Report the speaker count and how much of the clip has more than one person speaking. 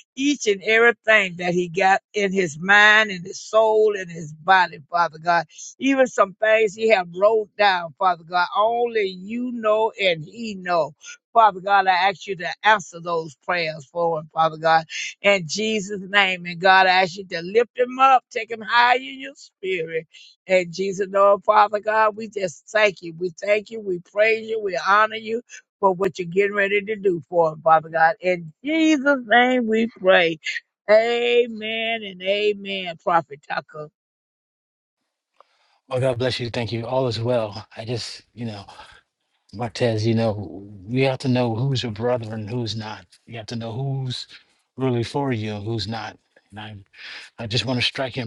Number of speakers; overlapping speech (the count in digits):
2, no overlap